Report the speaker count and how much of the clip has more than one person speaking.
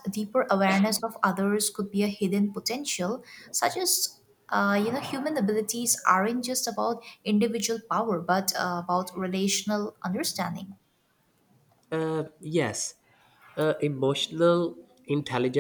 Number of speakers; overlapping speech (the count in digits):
2, no overlap